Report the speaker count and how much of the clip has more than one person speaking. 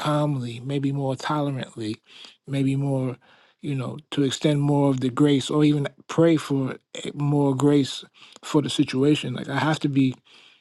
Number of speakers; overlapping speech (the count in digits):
1, no overlap